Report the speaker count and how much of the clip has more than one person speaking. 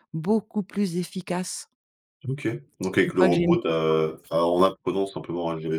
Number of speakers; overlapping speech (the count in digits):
2, about 13%